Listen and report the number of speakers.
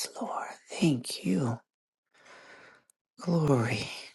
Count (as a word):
one